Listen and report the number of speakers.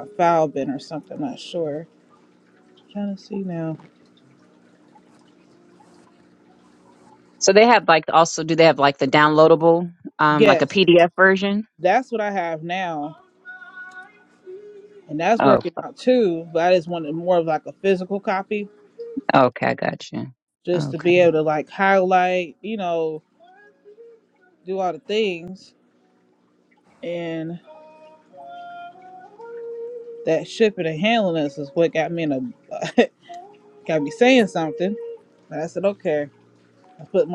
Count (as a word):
two